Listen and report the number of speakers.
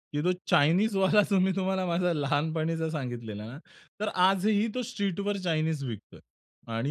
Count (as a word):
one